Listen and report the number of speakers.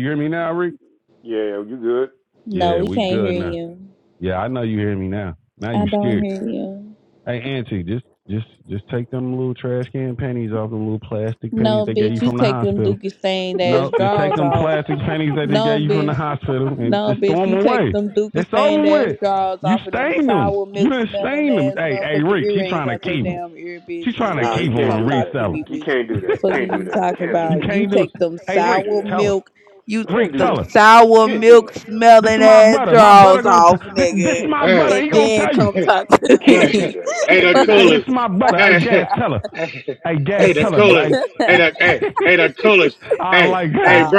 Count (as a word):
four